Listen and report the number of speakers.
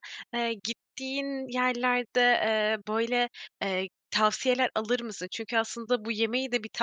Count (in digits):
1